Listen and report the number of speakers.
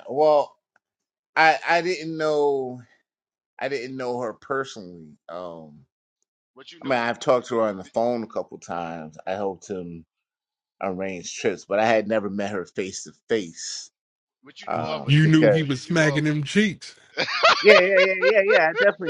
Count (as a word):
three